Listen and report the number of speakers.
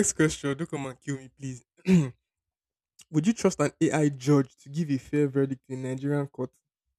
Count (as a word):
one